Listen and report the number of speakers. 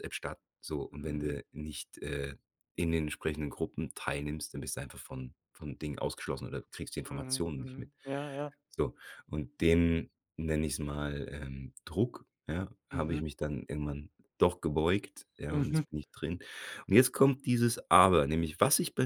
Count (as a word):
two